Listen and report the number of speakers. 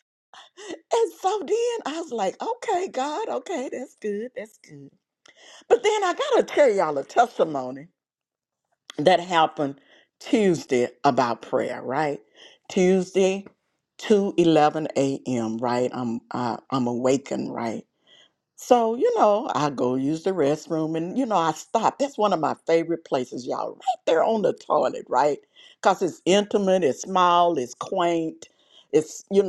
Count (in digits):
1